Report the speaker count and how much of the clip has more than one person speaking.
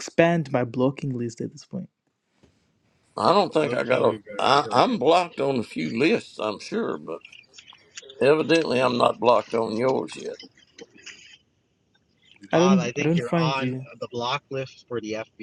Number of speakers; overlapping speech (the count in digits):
3, about 17%